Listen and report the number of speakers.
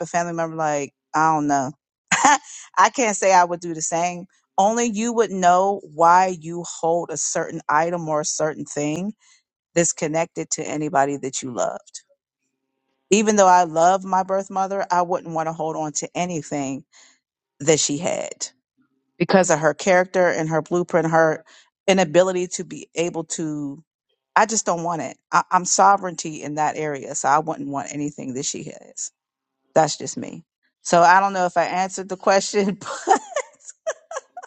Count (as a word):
one